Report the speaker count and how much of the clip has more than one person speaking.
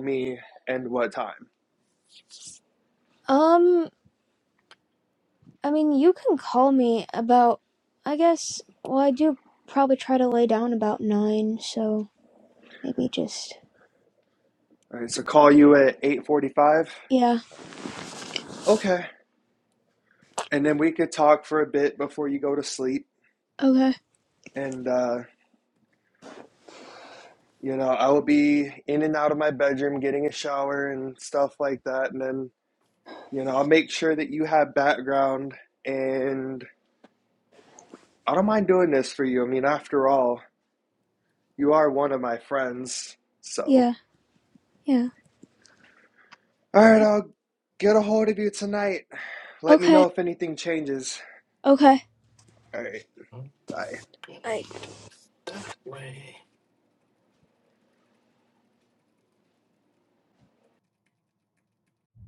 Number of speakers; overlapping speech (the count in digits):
3, about 1%